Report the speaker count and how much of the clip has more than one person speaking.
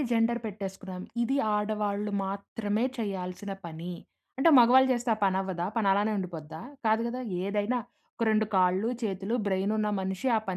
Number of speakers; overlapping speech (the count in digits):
1, no overlap